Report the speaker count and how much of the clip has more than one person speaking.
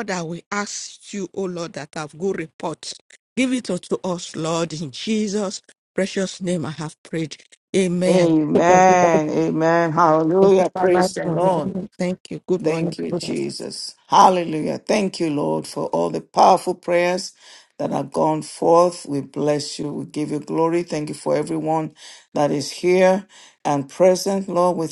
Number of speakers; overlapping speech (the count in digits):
2, about 7%